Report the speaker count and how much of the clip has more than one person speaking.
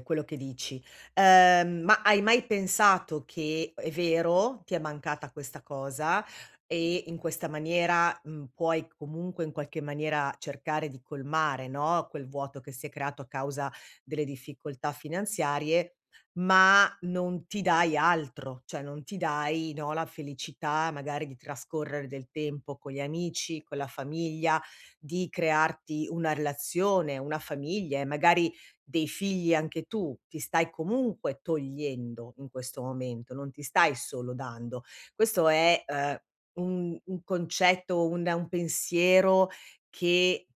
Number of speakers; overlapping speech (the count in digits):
1, no overlap